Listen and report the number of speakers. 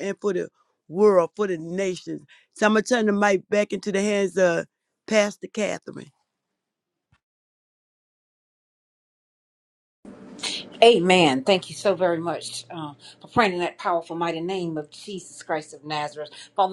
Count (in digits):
2